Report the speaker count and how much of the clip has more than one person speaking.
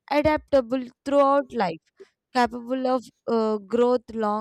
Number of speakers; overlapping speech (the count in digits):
1, no overlap